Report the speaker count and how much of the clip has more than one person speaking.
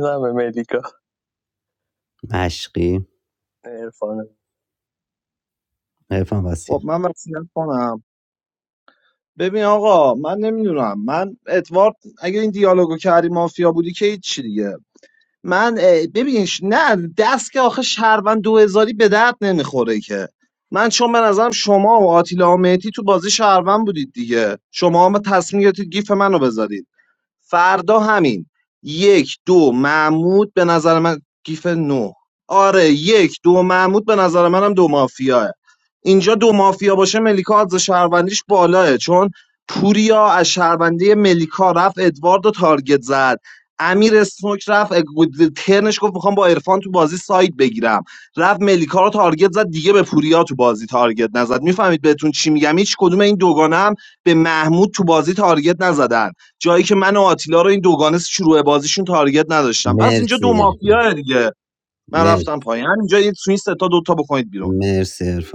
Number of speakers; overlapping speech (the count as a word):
three, about 2%